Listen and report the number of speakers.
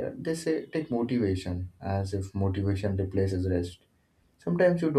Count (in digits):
1